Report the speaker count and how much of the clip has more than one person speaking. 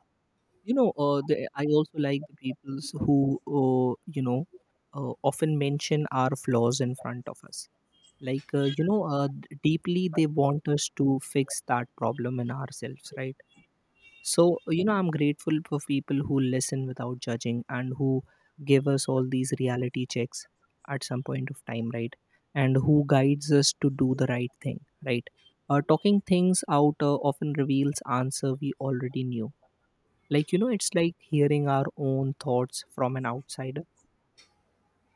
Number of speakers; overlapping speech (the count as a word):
one, no overlap